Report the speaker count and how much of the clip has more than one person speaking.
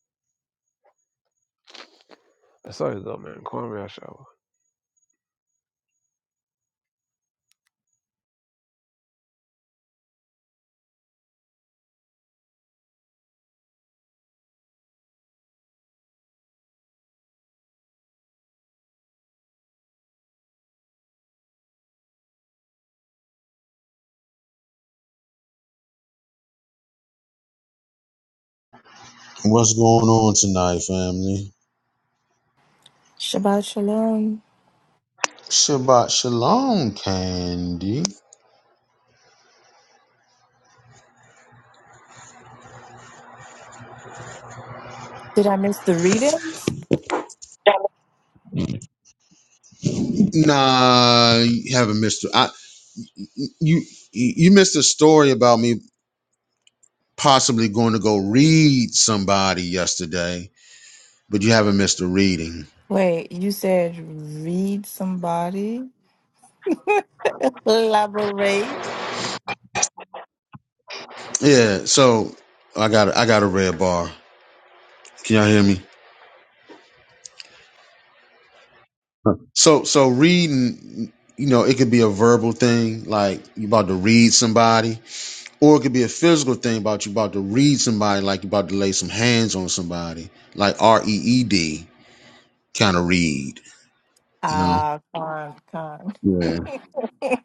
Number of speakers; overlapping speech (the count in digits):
3, under 1%